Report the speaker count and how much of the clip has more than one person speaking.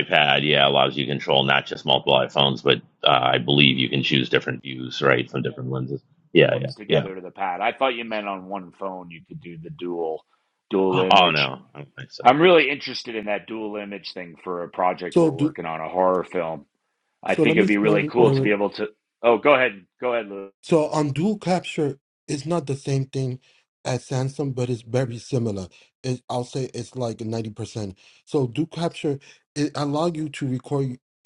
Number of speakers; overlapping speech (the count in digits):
3, about 9%